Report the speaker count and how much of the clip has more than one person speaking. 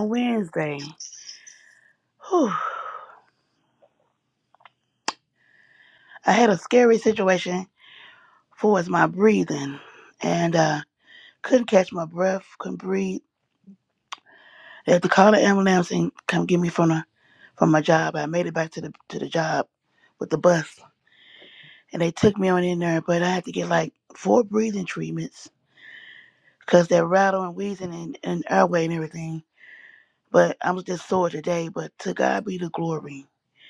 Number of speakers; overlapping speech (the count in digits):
1, no overlap